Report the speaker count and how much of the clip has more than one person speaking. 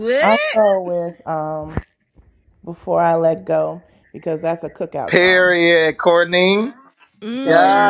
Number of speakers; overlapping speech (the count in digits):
3, about 16%